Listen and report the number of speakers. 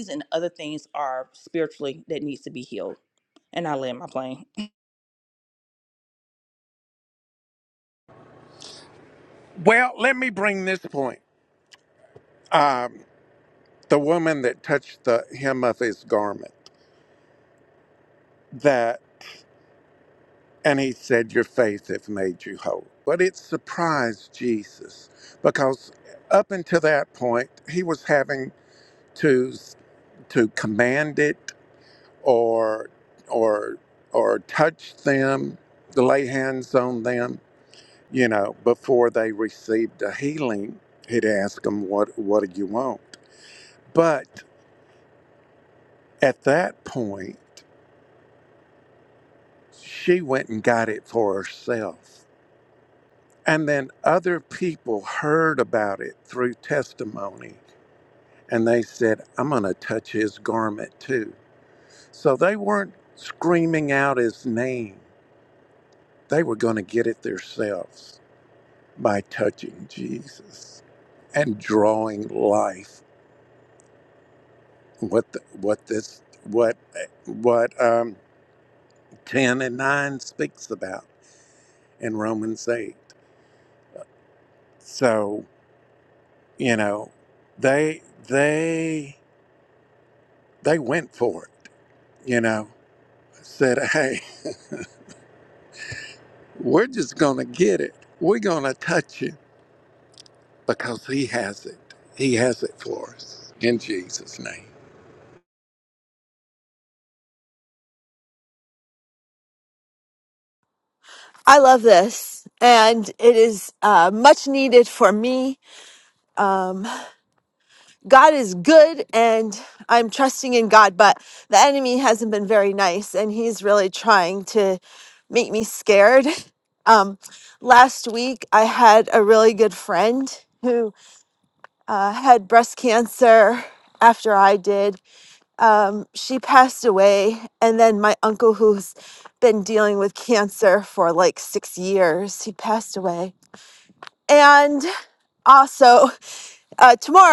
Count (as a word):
three